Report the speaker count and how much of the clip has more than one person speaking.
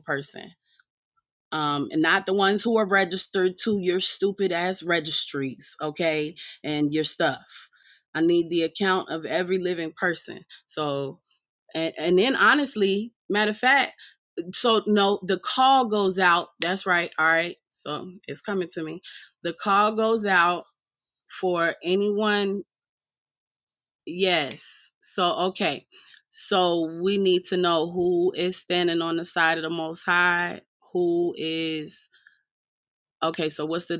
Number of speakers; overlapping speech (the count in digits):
1, no overlap